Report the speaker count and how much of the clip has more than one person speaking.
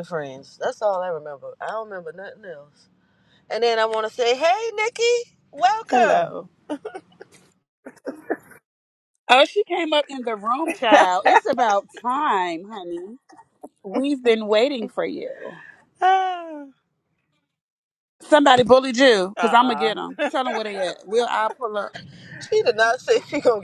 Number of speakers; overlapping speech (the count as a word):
three, about 4%